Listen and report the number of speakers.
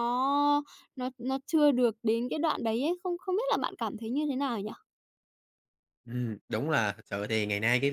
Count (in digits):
2